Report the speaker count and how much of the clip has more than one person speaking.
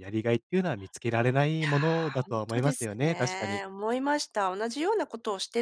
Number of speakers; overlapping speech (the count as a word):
two, about 36%